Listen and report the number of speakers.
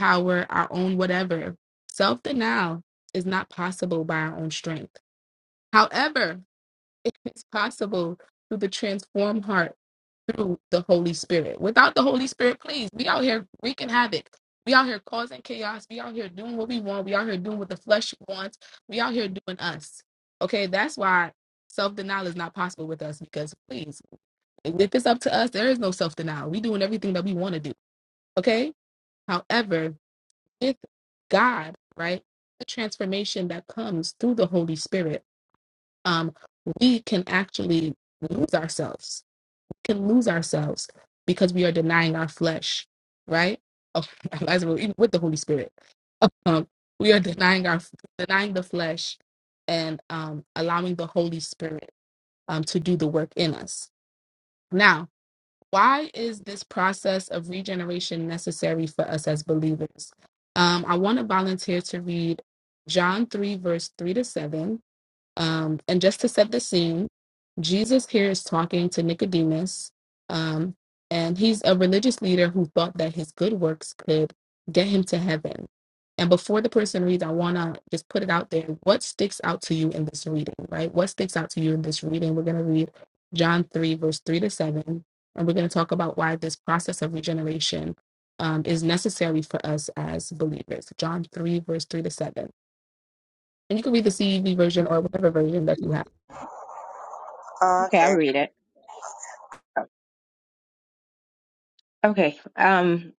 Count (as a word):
two